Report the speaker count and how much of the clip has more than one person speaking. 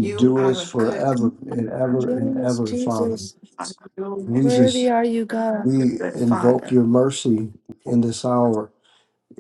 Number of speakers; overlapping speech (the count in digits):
3, about 45%